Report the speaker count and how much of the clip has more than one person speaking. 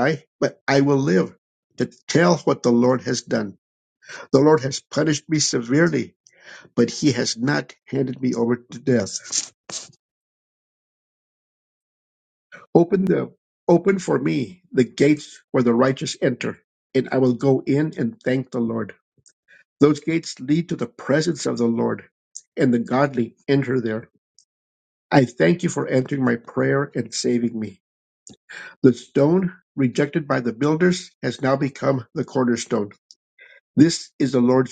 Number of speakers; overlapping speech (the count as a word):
one, no overlap